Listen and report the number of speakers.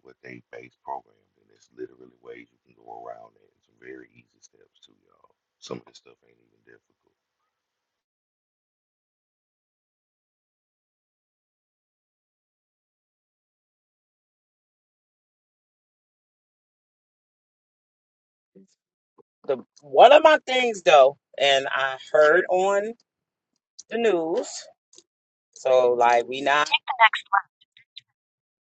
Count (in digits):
2